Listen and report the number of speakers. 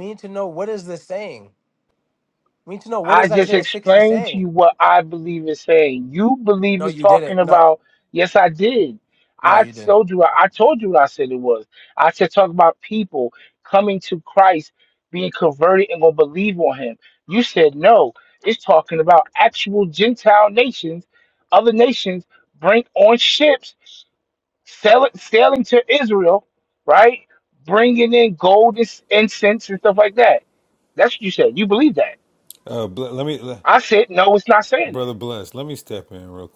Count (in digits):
3